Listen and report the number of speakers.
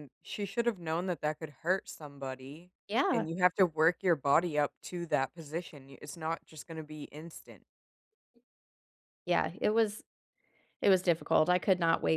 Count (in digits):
2